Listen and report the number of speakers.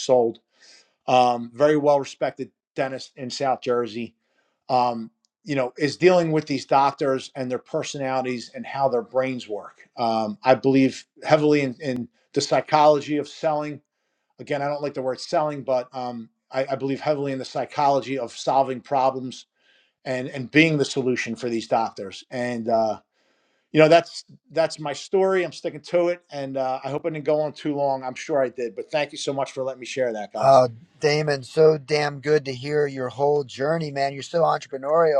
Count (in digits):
2